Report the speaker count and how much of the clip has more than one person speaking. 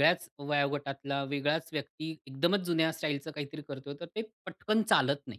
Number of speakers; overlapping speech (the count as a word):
one, no overlap